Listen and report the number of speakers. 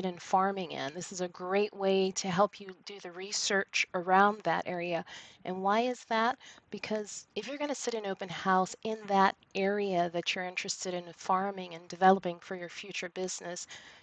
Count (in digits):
1